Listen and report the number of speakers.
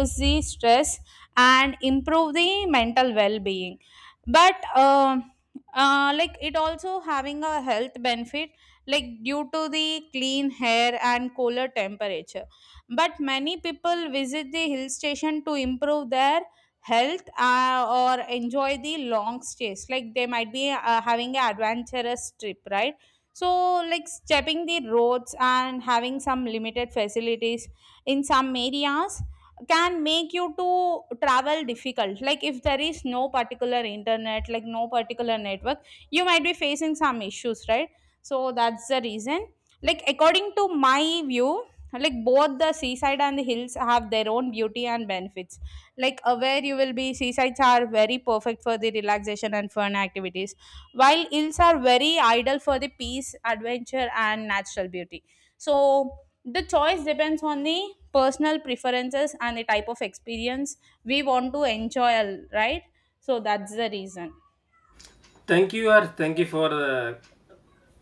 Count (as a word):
two